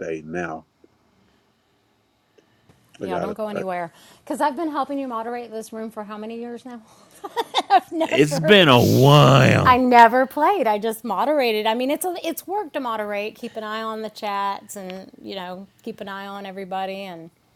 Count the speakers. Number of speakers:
3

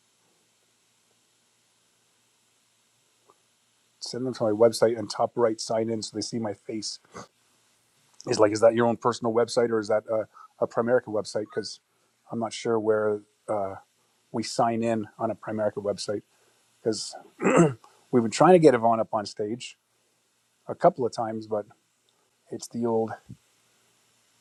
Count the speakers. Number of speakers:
1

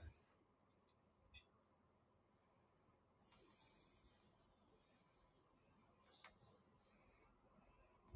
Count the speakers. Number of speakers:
0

